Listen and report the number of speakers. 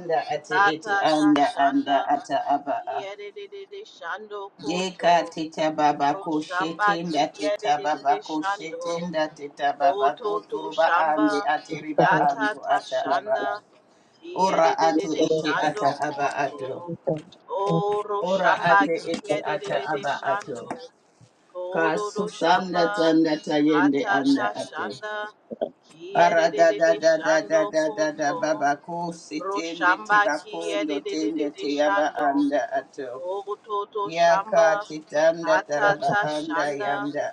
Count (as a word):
two